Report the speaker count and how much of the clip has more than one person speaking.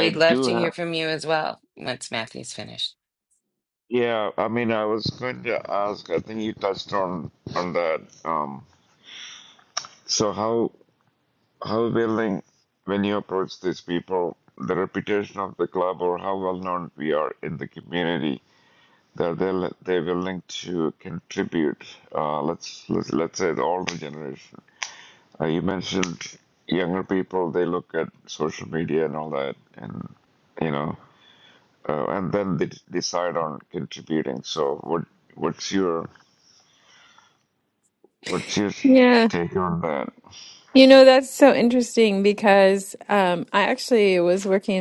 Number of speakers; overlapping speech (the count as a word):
three, about 2%